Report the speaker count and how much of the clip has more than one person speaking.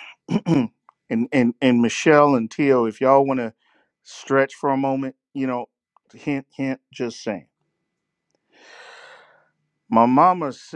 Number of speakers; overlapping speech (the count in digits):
1, no overlap